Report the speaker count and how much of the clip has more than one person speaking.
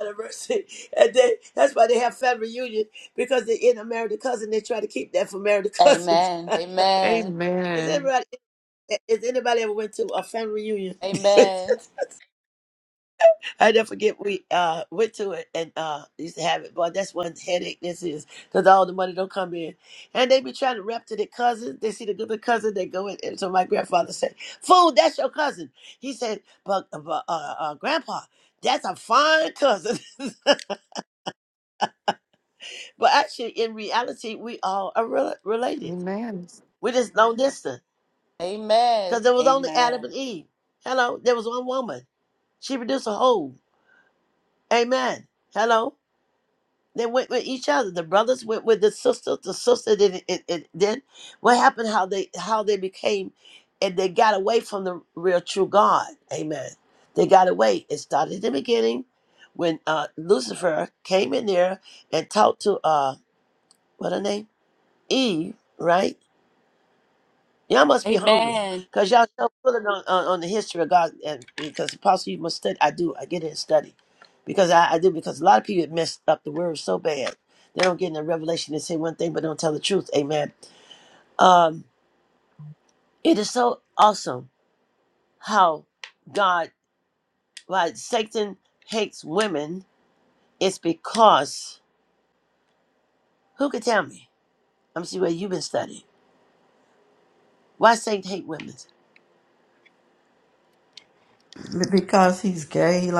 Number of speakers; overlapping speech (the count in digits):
4, about 2%